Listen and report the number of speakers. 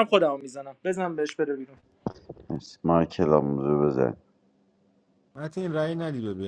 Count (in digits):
3